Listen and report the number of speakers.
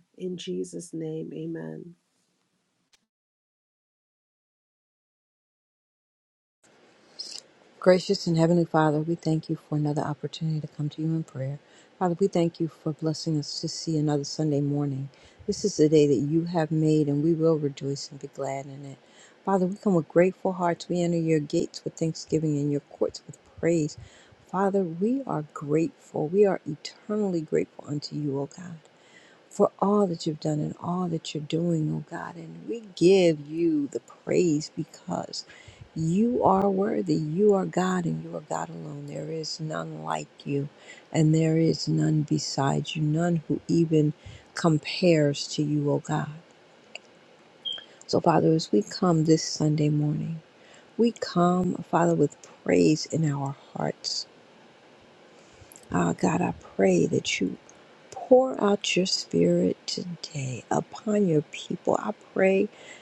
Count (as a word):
two